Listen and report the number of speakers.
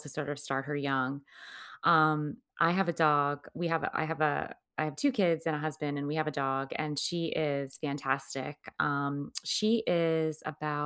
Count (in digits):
1